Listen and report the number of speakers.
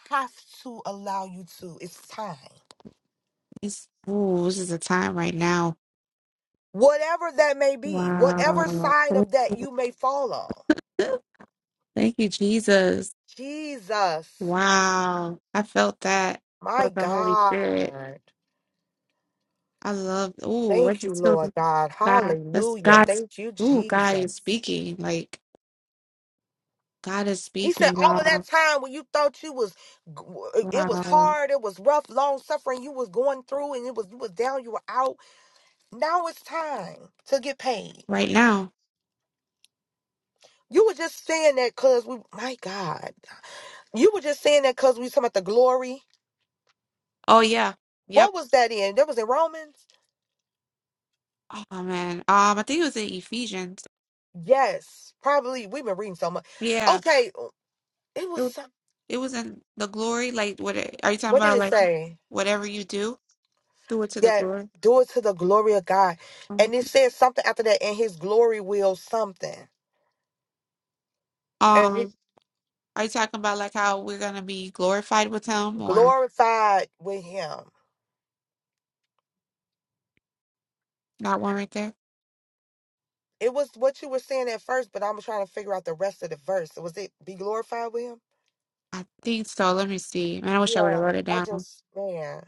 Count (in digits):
2